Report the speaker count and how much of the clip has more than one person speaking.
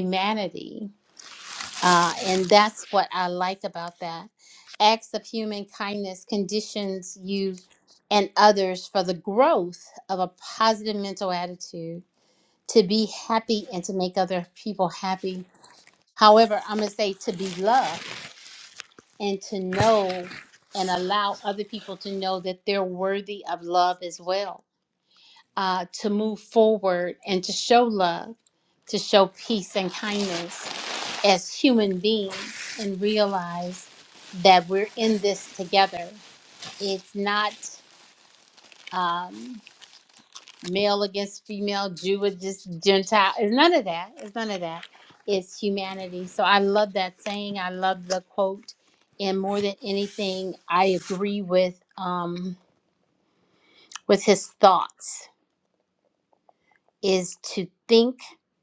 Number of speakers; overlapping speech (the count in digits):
1, no overlap